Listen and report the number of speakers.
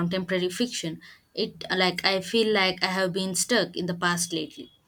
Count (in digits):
1